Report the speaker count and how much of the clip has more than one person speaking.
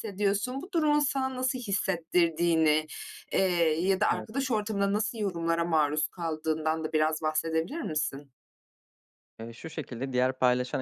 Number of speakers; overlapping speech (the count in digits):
2, about 2%